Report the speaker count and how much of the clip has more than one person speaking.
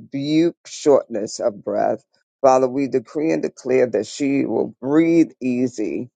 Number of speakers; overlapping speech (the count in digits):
1, no overlap